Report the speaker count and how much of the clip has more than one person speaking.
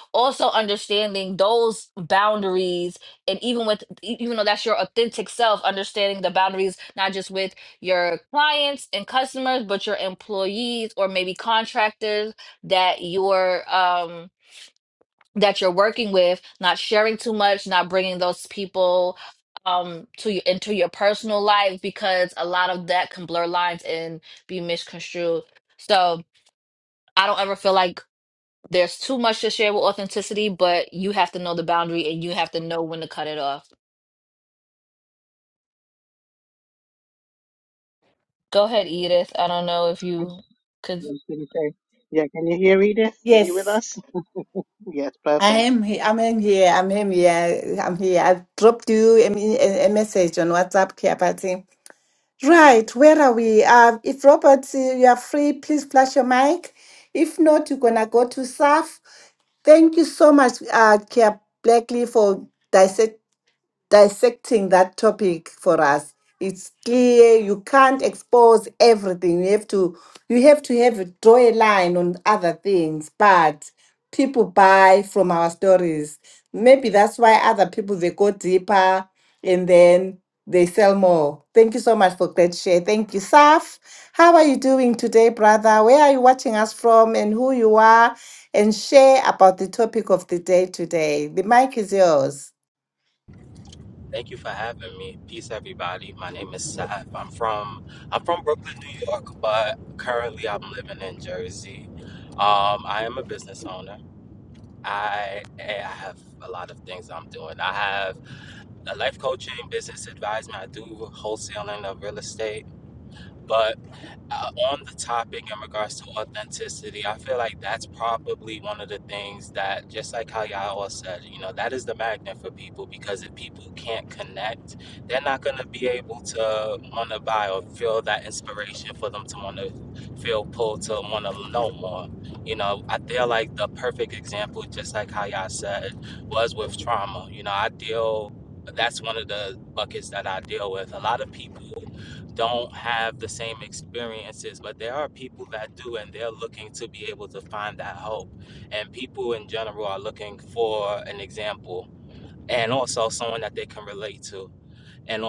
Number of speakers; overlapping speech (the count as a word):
four, under 1%